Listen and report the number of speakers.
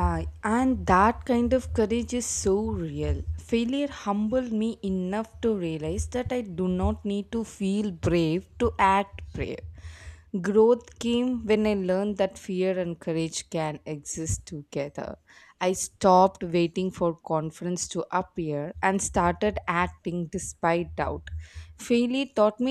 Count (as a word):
one